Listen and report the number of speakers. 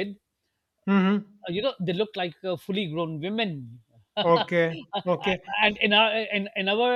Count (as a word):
two